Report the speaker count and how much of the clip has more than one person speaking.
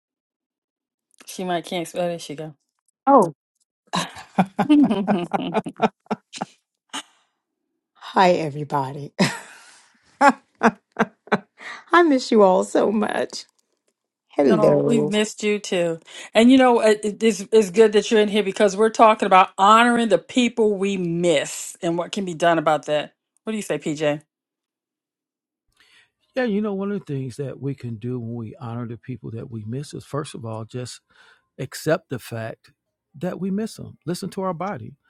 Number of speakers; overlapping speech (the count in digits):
3, about 2%